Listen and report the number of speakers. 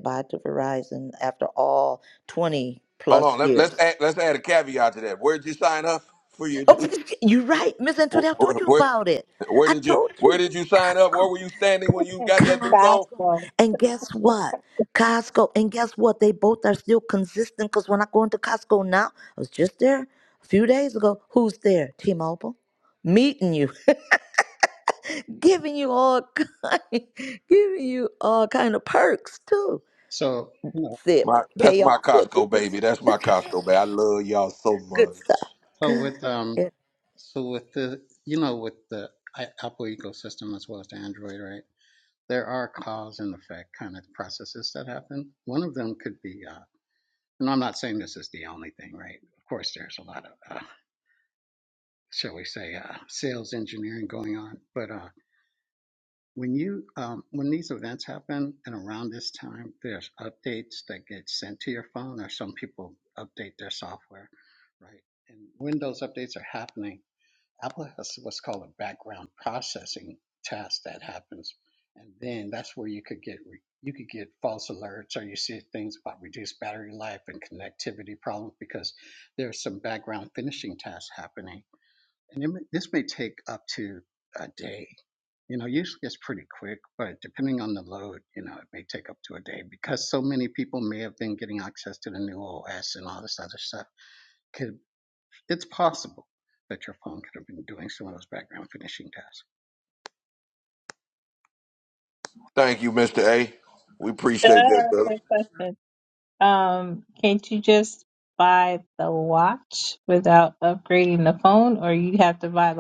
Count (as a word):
four